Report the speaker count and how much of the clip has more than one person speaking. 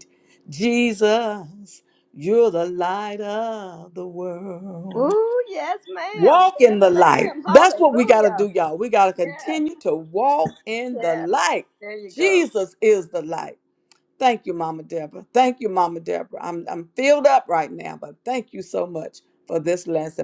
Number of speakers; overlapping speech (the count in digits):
2, about 18%